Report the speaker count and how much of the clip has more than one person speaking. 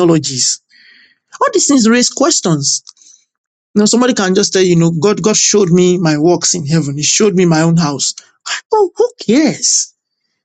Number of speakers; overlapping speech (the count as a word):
one, no overlap